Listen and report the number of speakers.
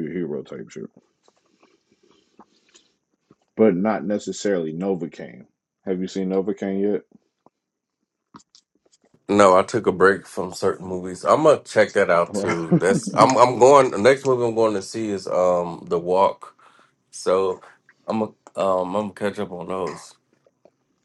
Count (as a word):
two